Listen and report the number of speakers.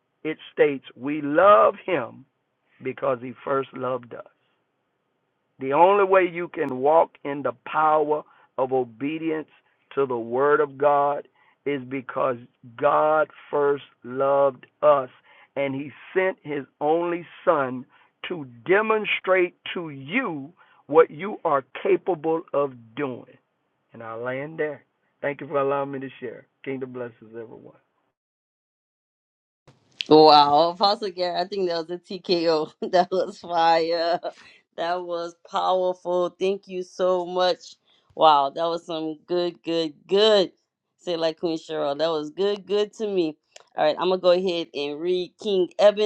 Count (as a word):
two